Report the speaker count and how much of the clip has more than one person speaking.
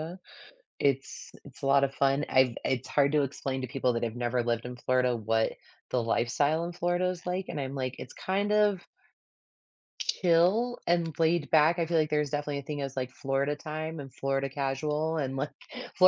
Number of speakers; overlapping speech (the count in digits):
1, no overlap